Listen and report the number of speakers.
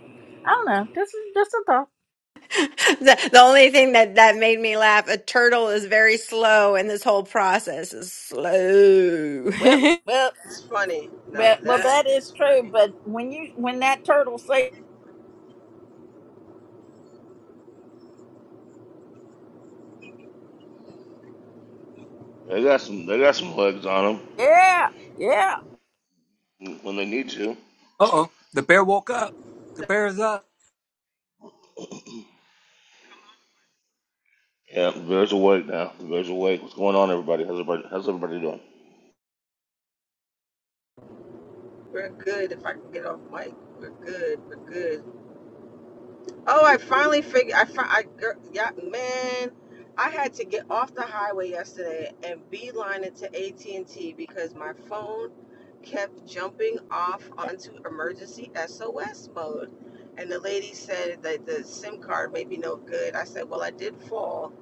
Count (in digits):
5